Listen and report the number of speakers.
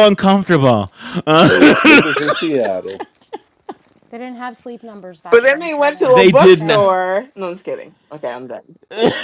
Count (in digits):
4